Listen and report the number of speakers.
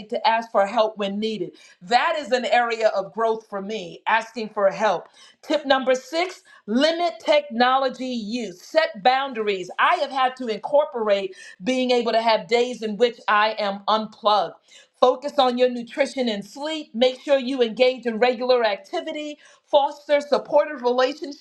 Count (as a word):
one